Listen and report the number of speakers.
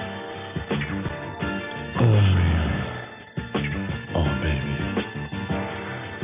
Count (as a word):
one